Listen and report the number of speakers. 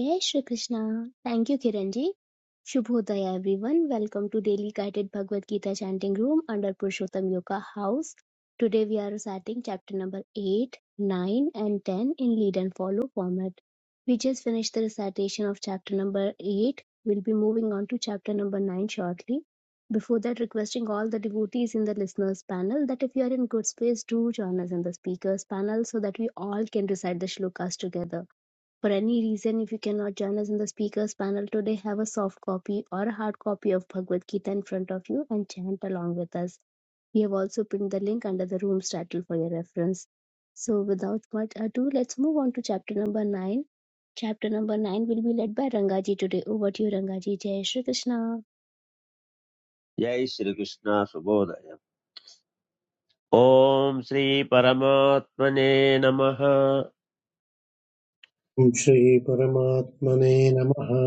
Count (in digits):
3